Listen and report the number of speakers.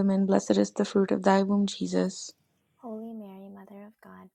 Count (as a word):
two